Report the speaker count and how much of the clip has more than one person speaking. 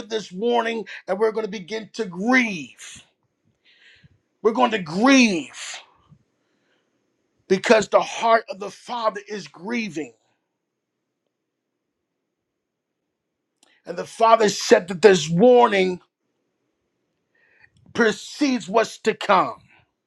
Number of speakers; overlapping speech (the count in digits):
1, no overlap